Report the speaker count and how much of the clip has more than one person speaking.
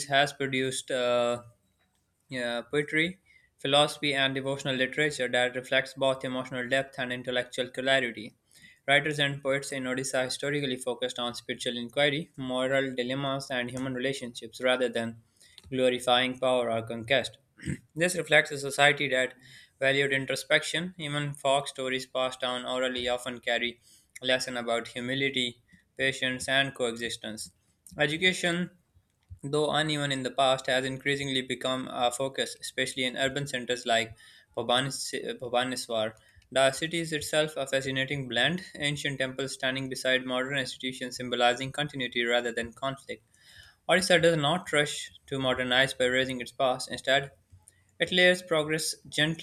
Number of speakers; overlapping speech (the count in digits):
1, no overlap